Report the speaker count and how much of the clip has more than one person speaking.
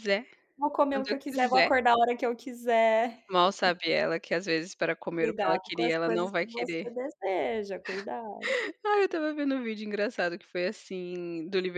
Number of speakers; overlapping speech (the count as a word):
two, about 21%